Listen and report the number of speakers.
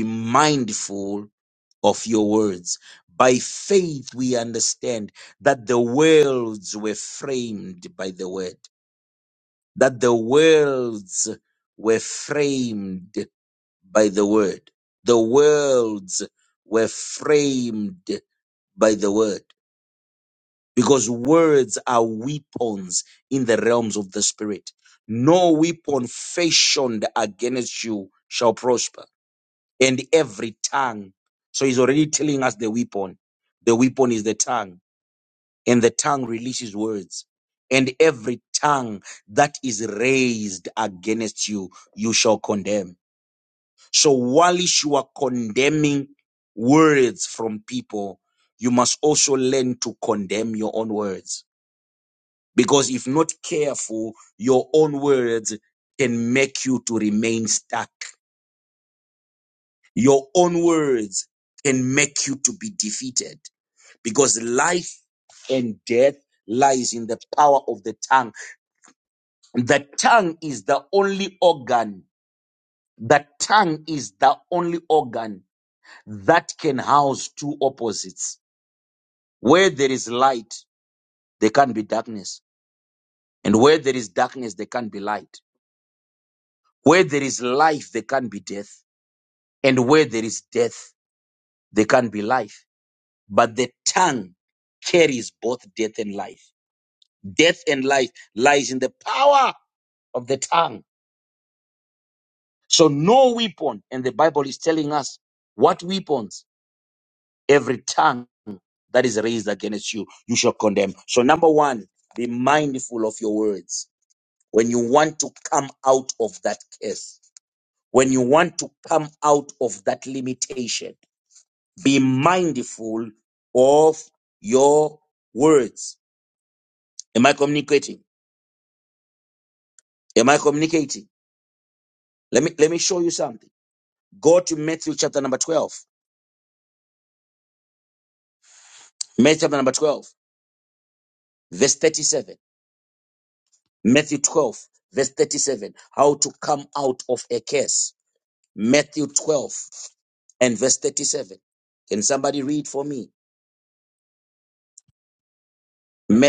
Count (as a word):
one